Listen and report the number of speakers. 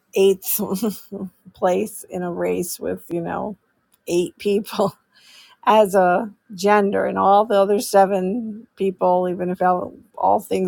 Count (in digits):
1